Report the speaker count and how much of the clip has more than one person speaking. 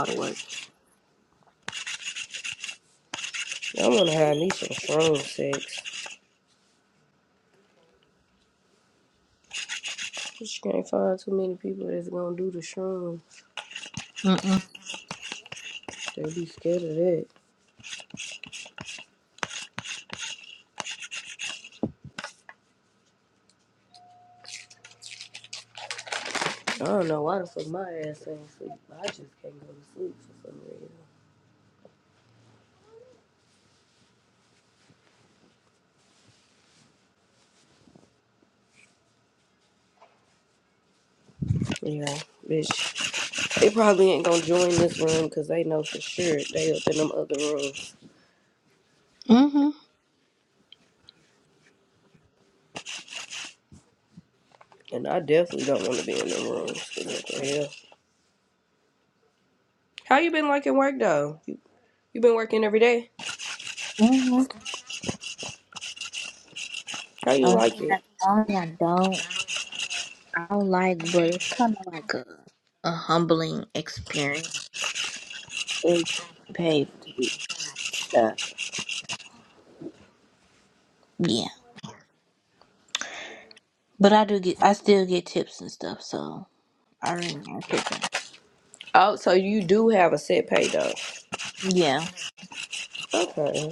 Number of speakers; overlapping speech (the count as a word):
two, about 1%